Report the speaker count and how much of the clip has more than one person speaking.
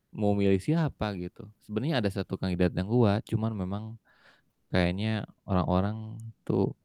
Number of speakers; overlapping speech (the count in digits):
1, no overlap